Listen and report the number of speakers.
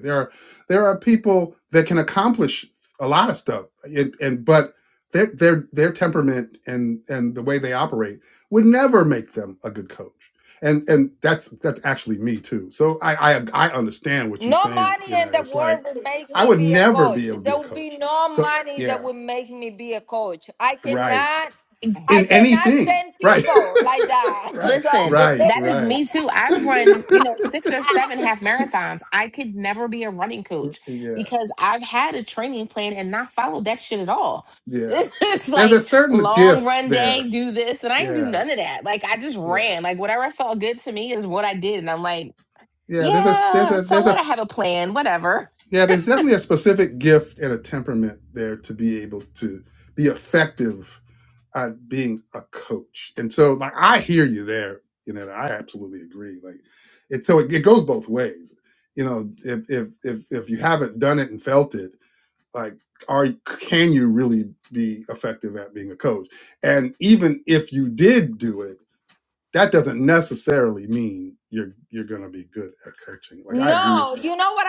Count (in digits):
3